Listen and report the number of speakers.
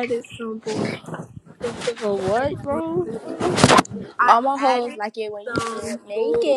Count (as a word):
three